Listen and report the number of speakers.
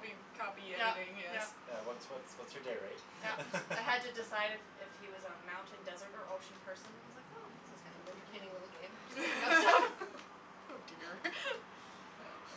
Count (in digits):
3